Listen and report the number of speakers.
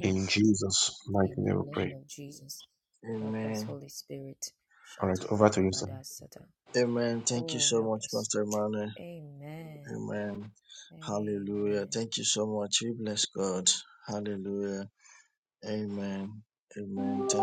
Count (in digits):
3